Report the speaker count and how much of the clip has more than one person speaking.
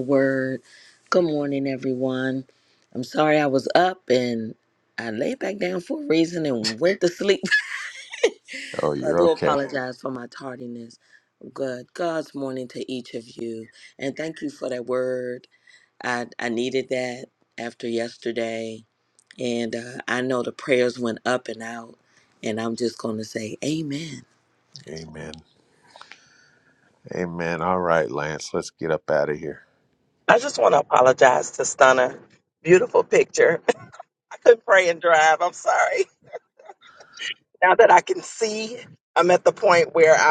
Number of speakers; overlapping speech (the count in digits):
3, about 1%